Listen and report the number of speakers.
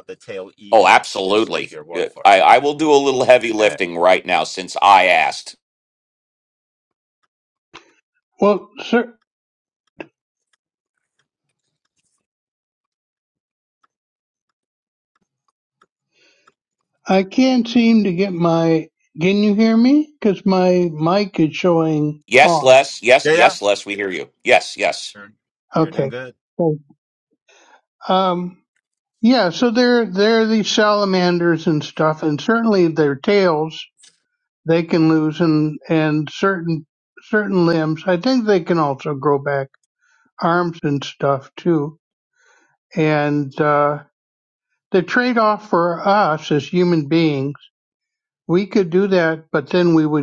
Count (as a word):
three